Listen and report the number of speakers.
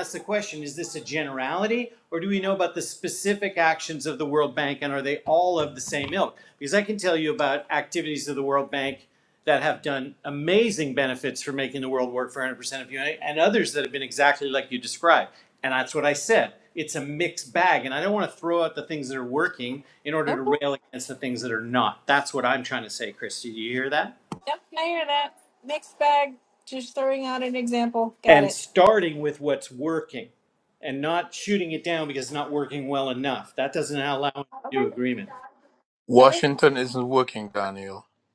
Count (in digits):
3